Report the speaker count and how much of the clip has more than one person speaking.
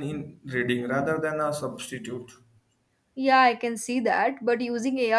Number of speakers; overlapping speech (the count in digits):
2, no overlap